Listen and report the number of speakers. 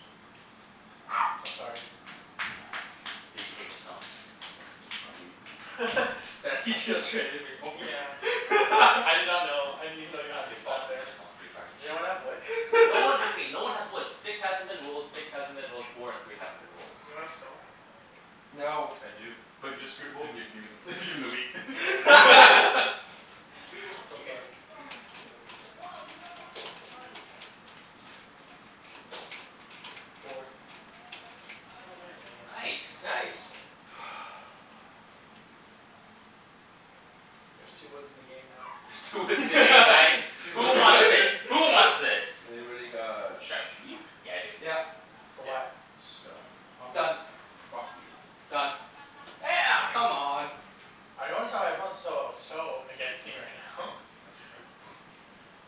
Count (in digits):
4